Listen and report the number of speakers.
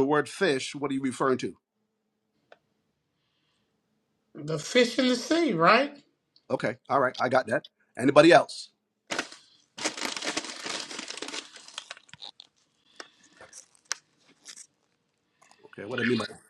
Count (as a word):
two